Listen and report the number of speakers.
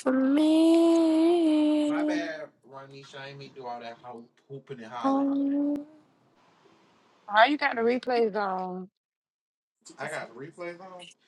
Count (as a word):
three